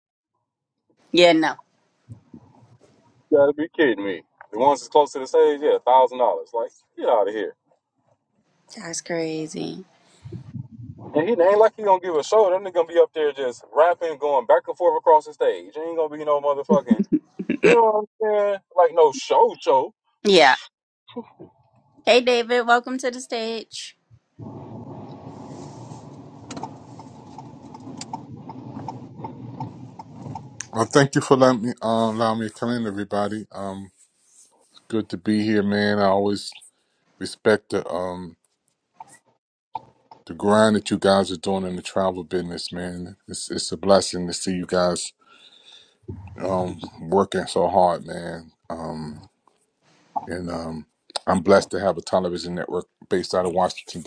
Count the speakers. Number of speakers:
three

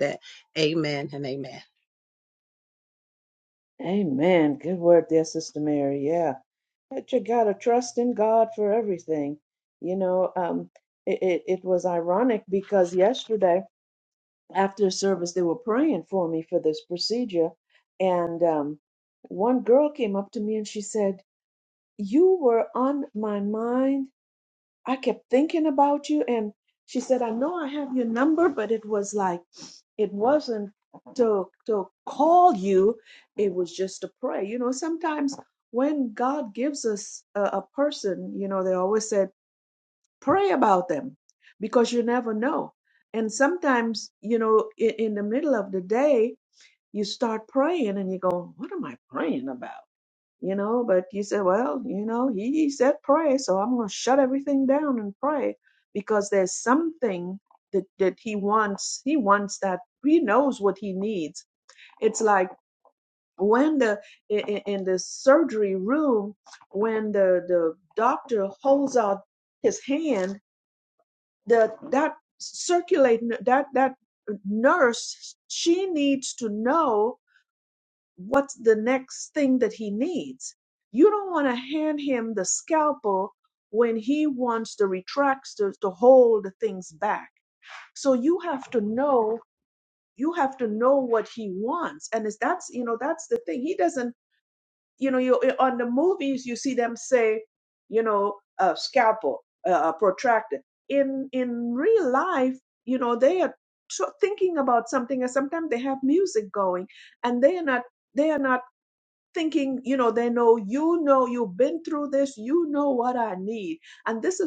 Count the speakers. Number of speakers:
two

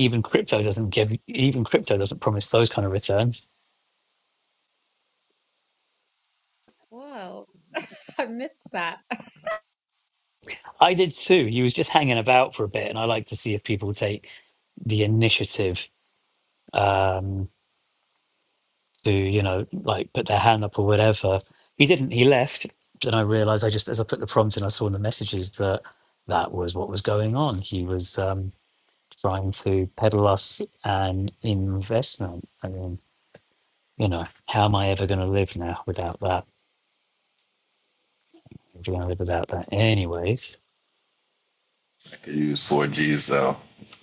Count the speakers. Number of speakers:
three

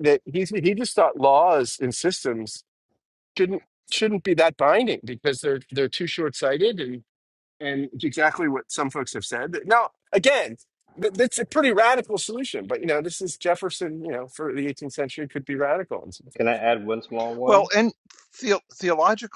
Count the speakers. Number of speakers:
three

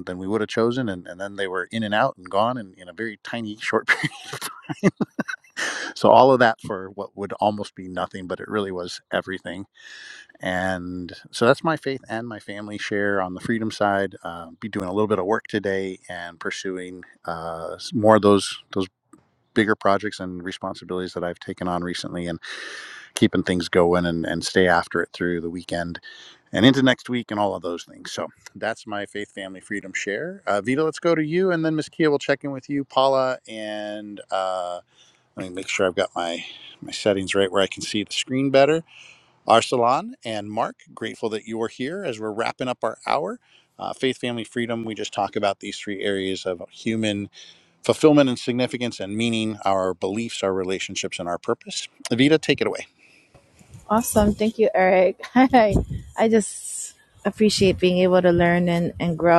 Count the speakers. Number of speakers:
two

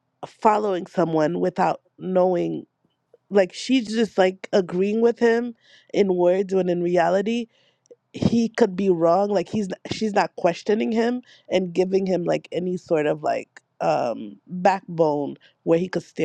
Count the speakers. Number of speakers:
one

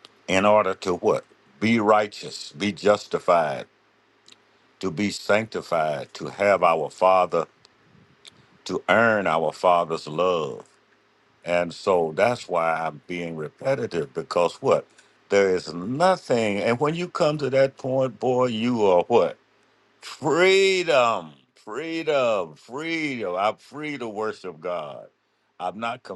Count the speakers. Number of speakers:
one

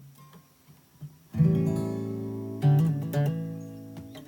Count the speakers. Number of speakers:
zero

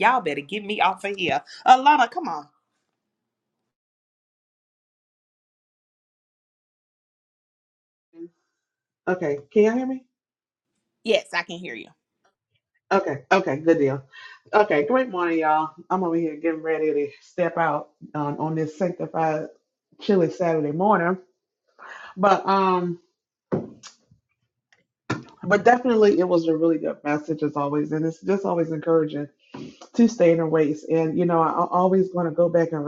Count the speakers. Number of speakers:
two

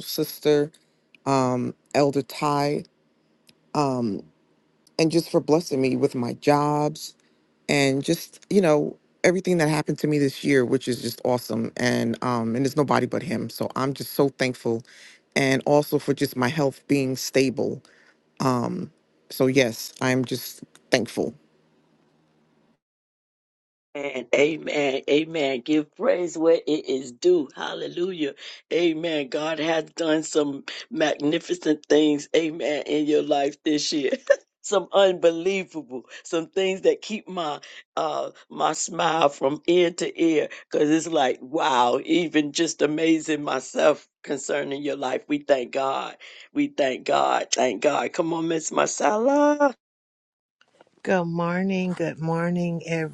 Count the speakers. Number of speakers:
three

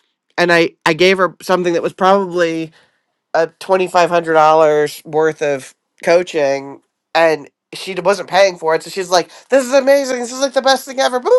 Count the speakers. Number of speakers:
one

